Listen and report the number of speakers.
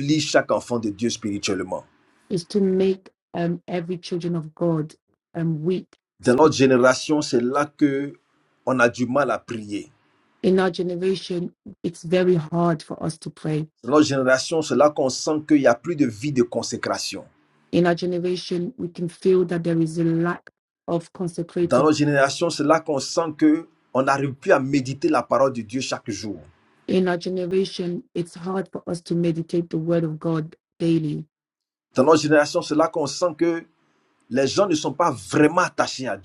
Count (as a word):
two